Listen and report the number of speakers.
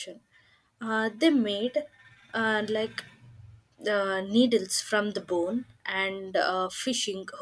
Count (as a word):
one